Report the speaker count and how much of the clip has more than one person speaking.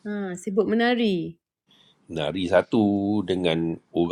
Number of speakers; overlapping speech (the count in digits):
2, no overlap